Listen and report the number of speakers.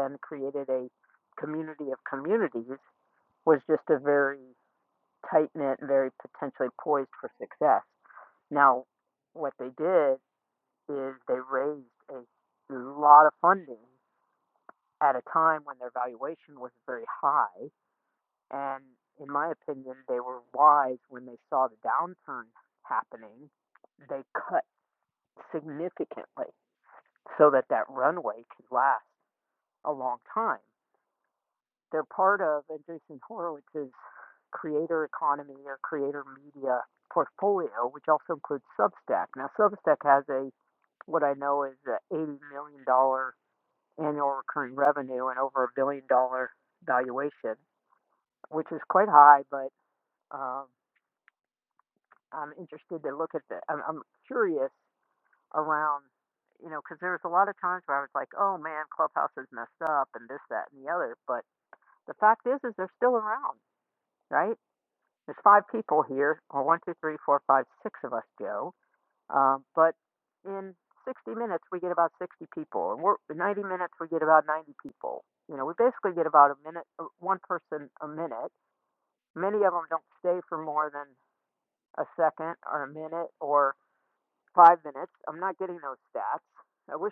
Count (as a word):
one